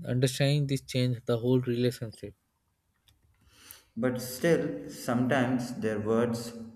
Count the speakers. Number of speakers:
2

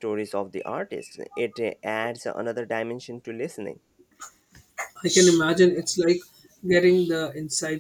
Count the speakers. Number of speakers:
2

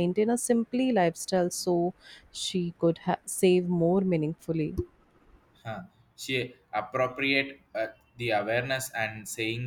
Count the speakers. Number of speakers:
2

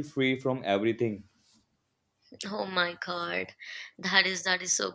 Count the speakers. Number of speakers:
2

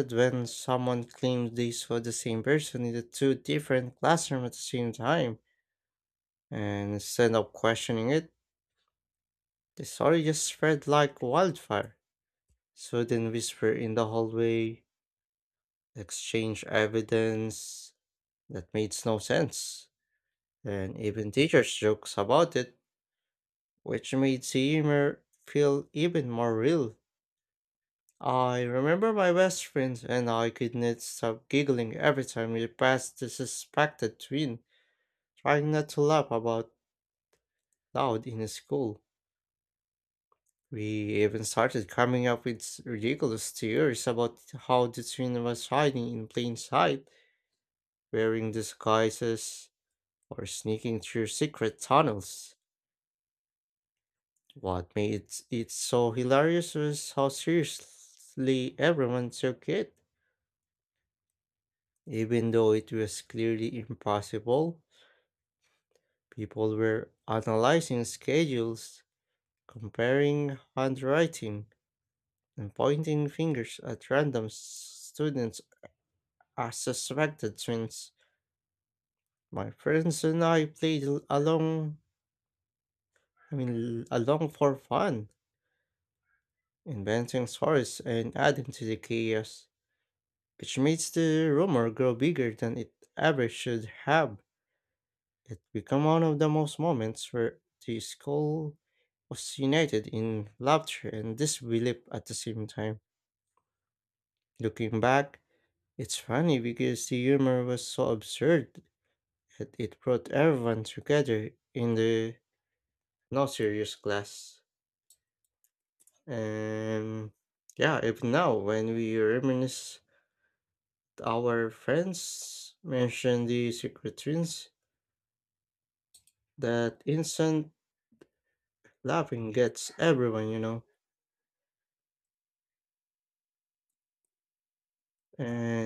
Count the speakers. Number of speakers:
1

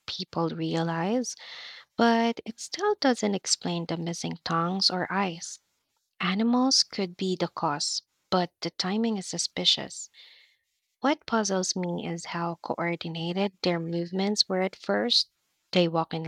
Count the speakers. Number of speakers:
1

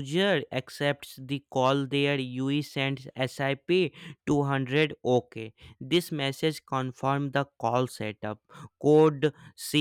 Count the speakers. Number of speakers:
1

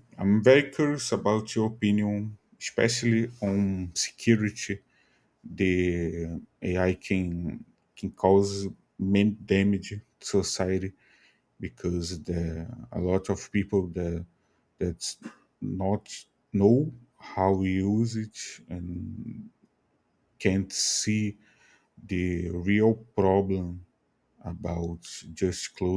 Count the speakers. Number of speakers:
1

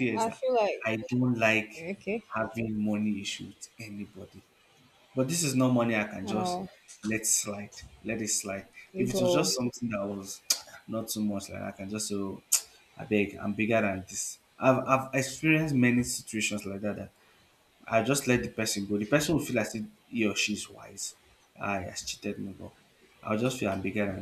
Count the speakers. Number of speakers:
2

